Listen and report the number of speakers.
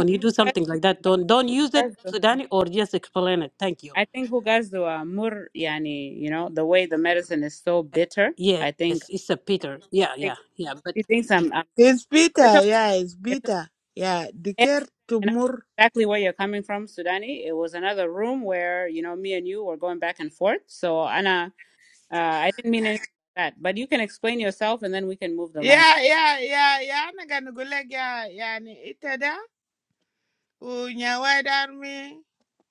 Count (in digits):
3